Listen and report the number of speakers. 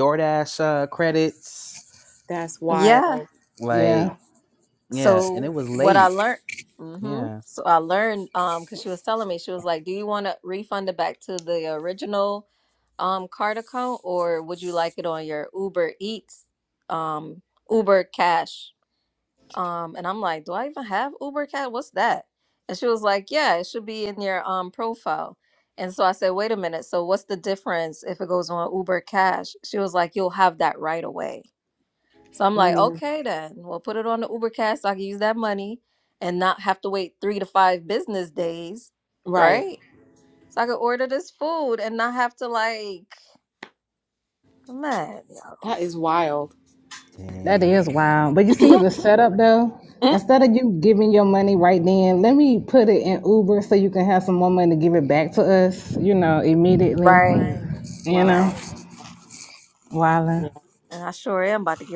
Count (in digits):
4